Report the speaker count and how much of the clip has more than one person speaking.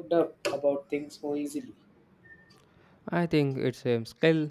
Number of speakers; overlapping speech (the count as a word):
two, no overlap